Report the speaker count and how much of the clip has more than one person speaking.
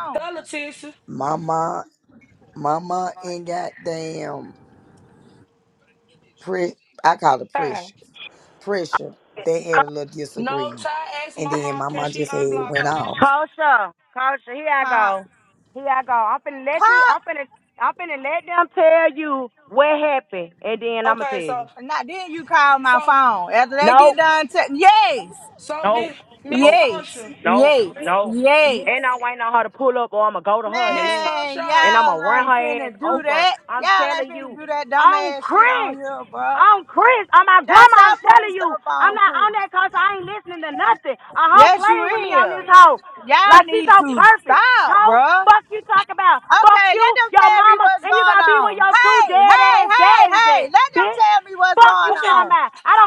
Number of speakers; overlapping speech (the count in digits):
4, about 41%